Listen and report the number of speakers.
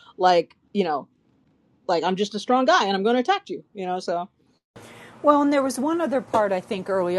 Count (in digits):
2